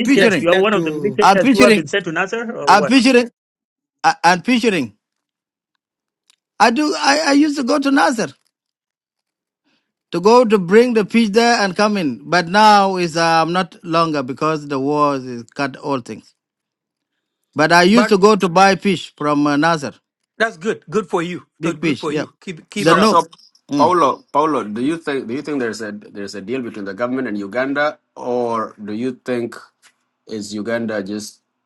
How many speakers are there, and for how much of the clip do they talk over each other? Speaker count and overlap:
four, about 10%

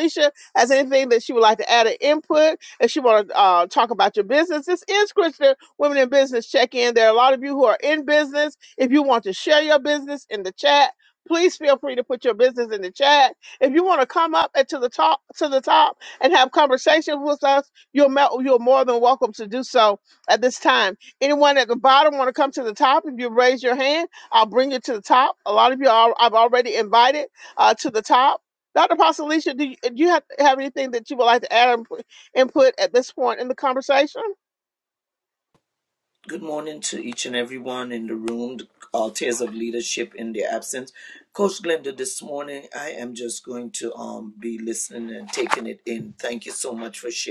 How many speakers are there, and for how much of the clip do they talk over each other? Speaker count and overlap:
two, no overlap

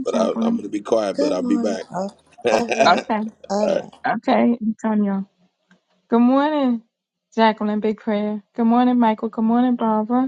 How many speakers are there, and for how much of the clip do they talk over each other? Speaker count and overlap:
three, about 19%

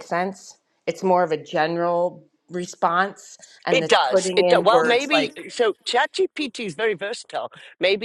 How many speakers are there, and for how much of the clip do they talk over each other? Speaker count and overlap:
two, about 21%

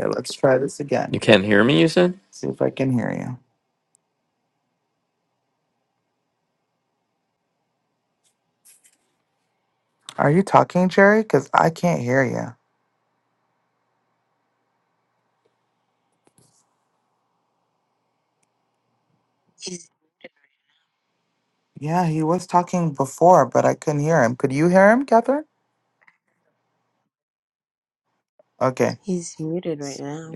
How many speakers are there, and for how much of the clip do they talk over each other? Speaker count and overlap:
three, no overlap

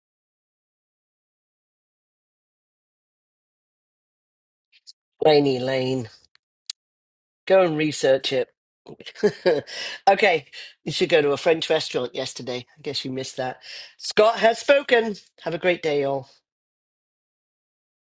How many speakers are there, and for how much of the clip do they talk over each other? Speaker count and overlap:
one, no overlap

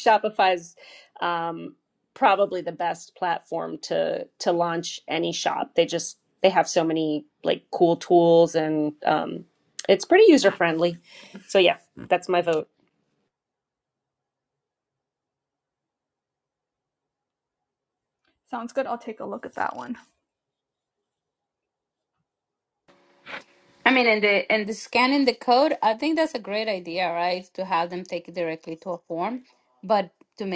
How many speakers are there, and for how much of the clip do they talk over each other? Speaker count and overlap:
three, no overlap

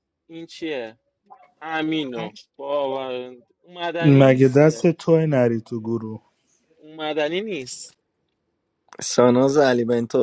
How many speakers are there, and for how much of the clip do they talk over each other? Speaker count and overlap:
three, about 8%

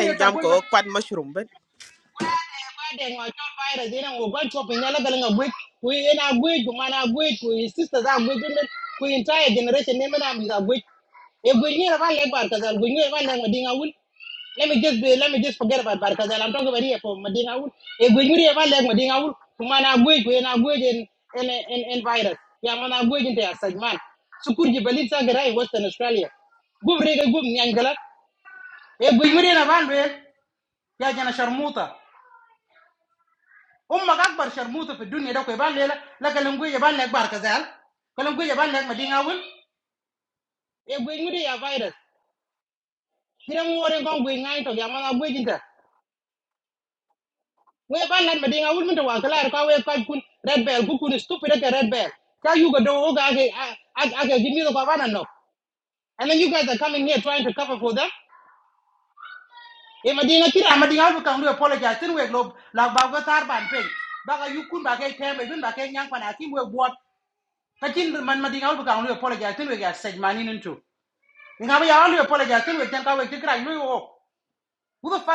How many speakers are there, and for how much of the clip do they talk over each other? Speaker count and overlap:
two, about 1%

